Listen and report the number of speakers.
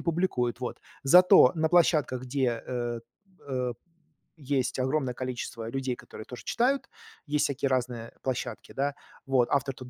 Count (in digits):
1